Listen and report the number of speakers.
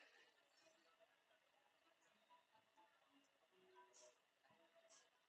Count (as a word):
zero